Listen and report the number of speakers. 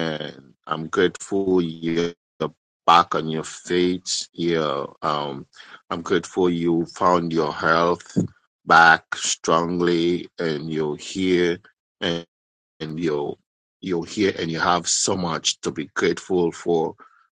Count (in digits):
1